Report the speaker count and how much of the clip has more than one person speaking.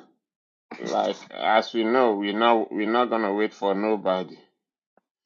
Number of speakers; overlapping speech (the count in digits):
1, no overlap